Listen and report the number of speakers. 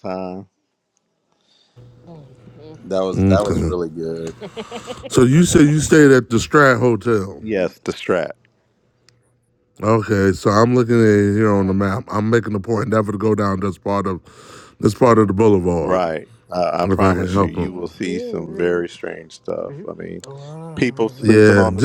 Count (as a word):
three